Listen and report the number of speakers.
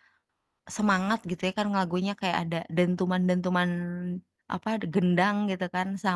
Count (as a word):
one